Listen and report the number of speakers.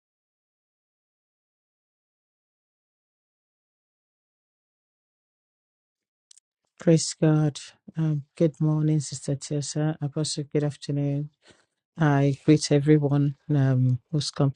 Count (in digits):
1